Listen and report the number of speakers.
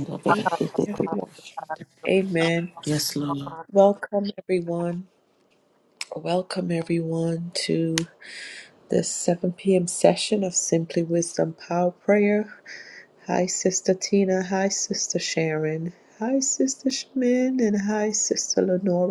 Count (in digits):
2